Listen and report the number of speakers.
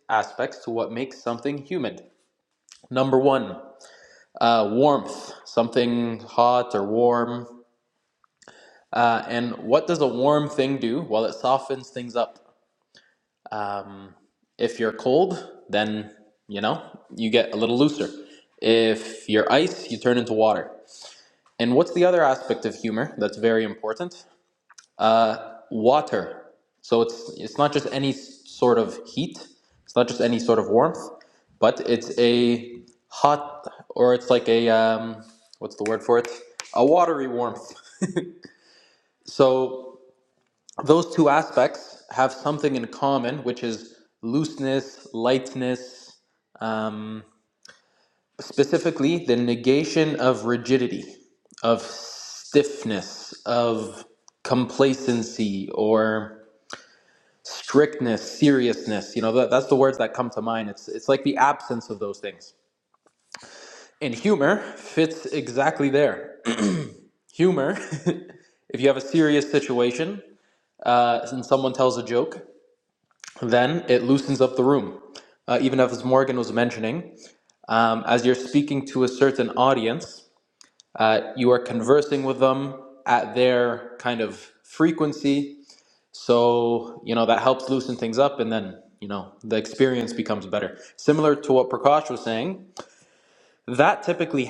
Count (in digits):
1